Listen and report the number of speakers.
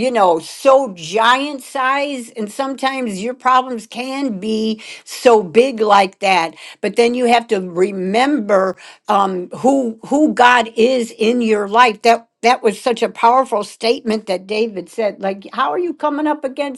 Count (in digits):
1